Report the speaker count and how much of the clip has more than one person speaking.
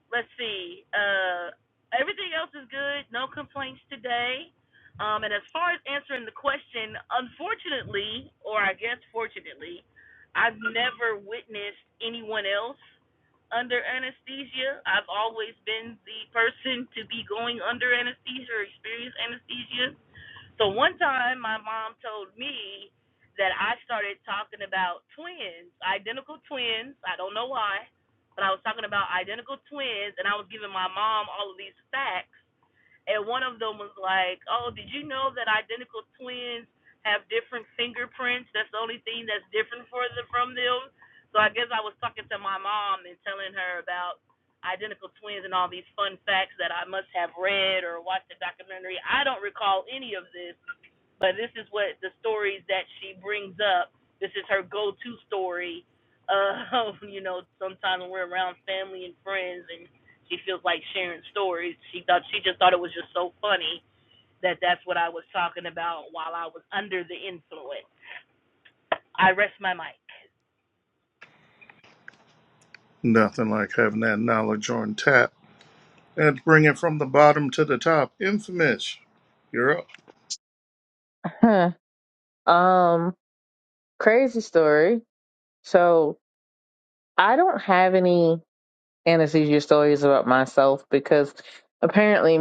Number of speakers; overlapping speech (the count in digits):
3, no overlap